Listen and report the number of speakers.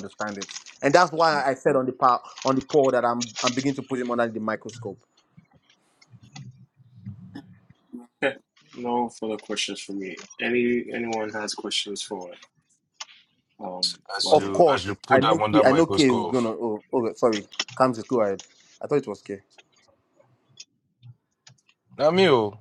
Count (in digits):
3